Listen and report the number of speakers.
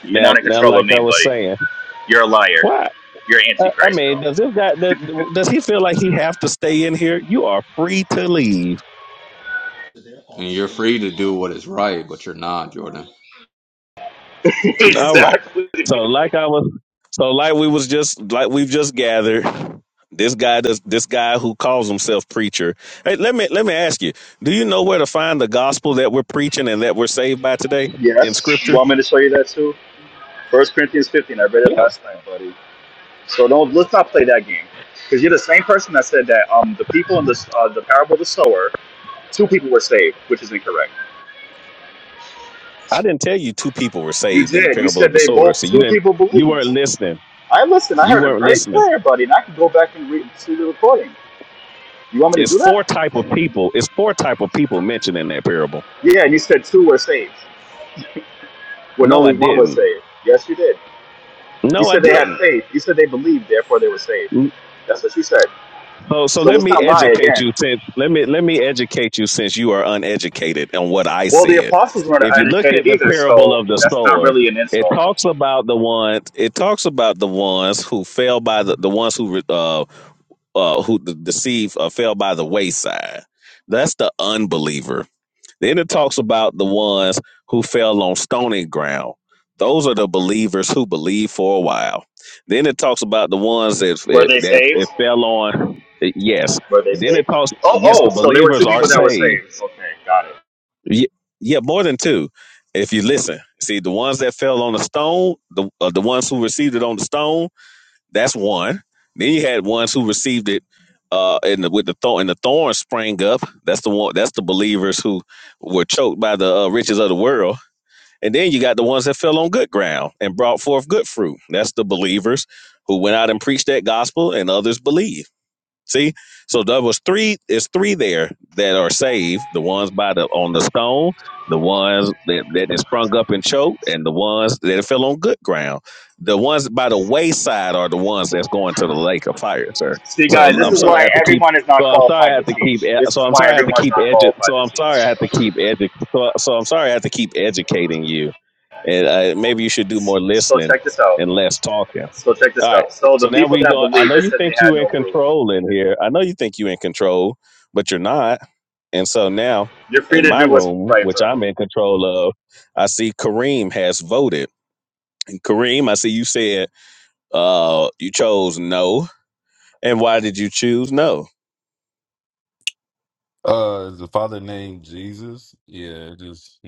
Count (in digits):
4